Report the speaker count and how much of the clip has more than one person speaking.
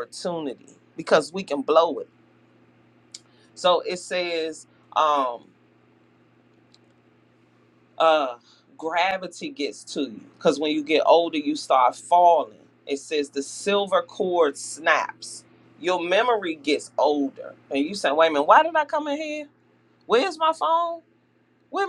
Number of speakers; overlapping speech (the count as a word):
one, no overlap